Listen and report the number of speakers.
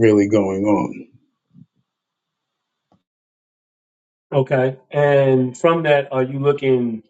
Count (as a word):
two